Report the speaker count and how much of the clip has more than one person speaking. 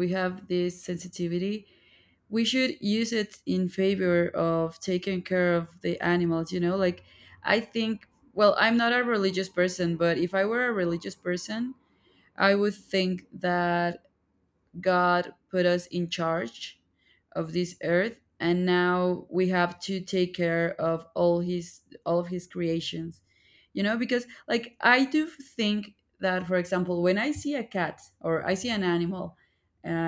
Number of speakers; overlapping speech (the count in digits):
1, no overlap